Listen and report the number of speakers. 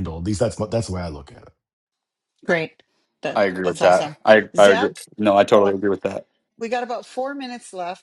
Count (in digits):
3